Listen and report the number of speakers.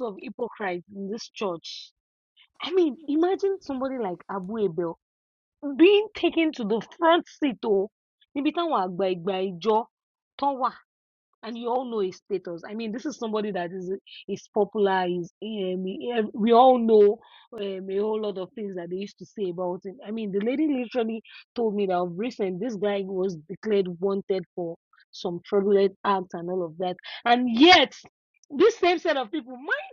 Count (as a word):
one